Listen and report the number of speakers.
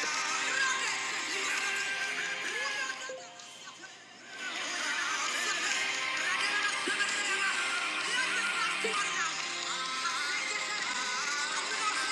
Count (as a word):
zero